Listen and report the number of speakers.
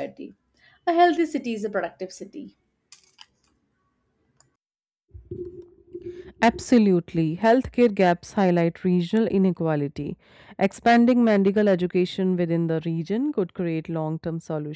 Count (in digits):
2